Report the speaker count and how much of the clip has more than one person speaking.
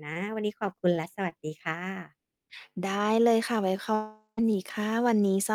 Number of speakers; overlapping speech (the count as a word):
two, no overlap